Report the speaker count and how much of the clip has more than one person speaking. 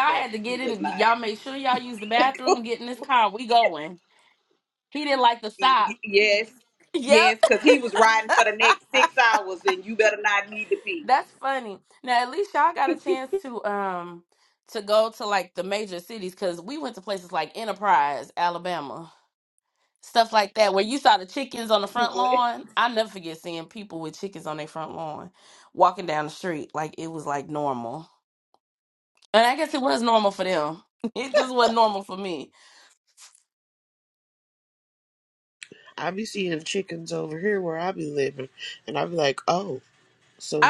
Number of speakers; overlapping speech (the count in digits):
3, about 5%